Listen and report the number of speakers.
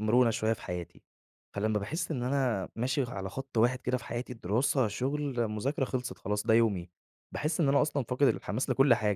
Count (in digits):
1